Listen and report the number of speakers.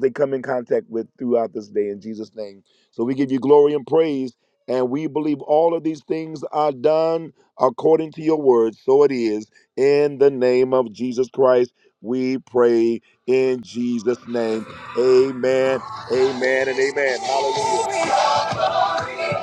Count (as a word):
one